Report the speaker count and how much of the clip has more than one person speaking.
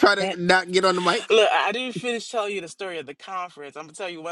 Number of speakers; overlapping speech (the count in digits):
2, about 2%